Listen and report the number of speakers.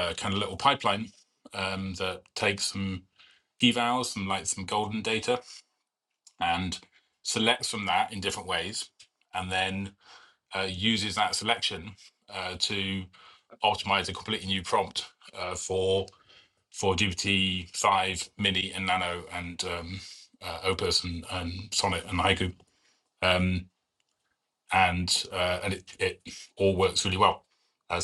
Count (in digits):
1